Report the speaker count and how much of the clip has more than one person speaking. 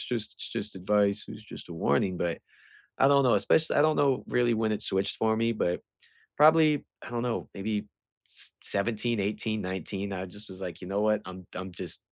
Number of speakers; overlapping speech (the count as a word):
one, no overlap